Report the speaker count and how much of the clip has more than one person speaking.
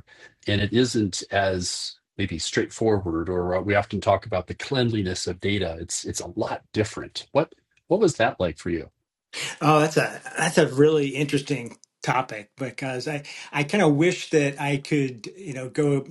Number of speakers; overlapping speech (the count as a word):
two, no overlap